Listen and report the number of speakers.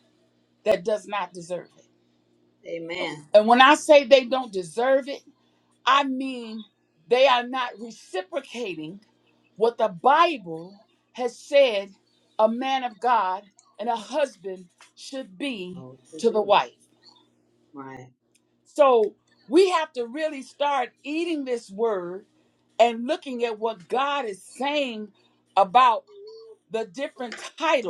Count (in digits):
2